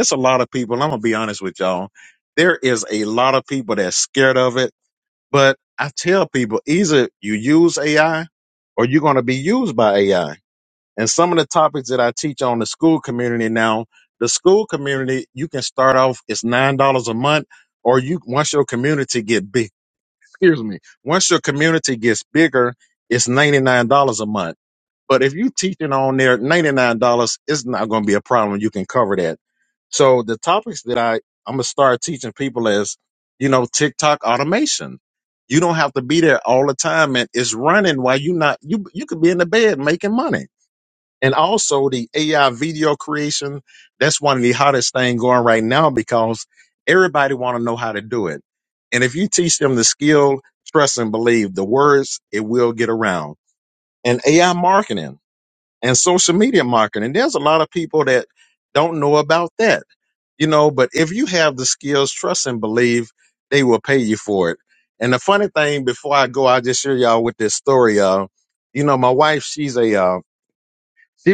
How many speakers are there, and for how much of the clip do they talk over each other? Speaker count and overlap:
one, no overlap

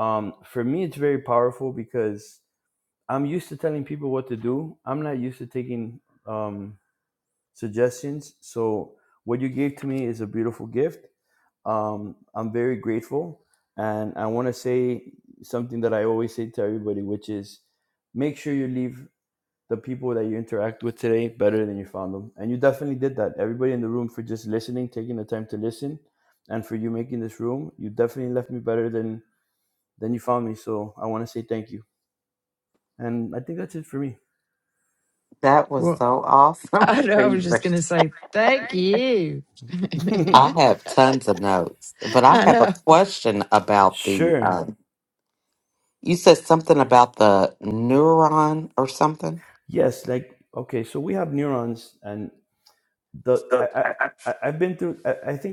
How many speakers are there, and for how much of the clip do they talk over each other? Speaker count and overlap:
three, about 3%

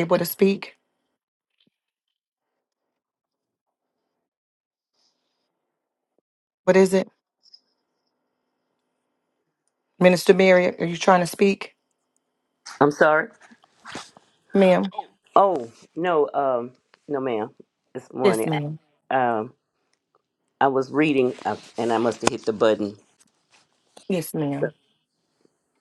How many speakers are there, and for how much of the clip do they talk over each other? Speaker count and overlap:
two, about 1%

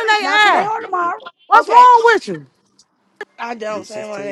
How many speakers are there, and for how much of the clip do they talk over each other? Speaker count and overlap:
three, about 24%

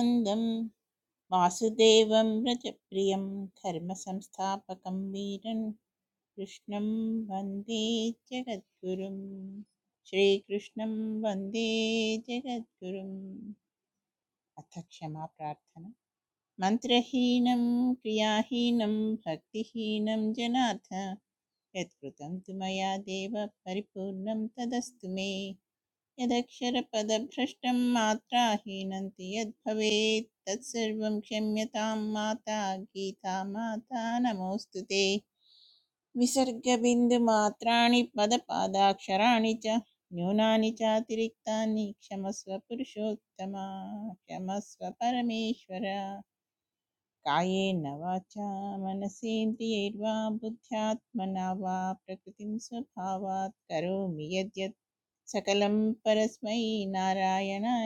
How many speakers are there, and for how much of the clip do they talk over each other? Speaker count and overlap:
one, no overlap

